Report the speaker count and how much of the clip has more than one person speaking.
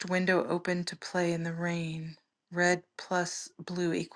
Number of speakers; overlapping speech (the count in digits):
1, no overlap